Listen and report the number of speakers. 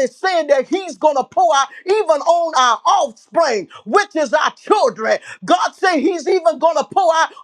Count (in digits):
1